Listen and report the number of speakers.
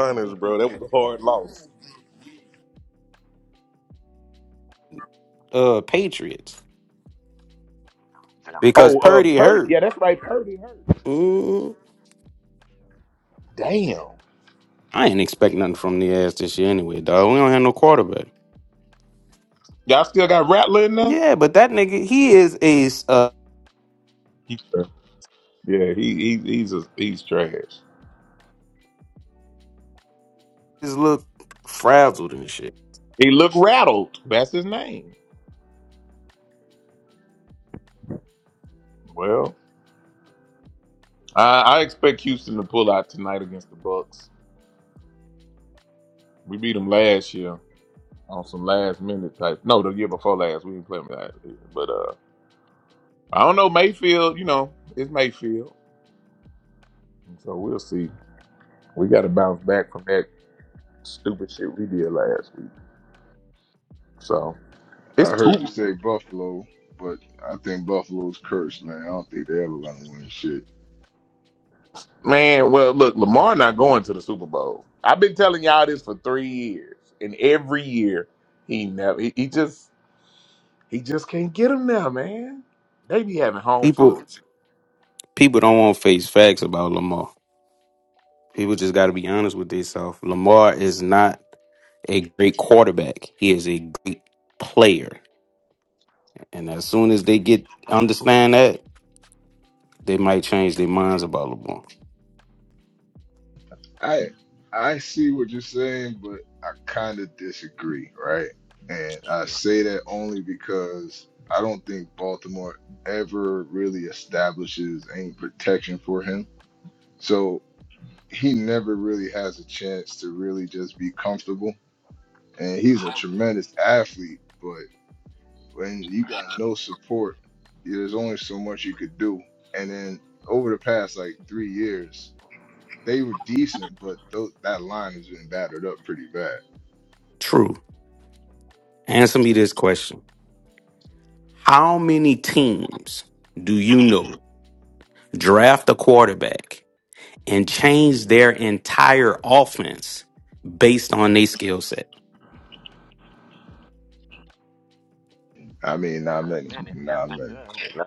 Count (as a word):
five